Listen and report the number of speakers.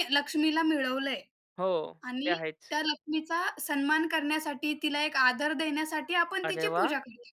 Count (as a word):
two